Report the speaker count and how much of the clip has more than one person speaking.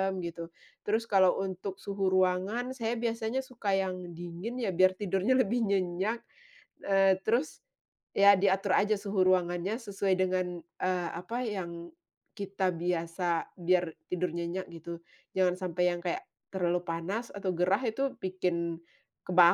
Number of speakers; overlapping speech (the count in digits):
1, no overlap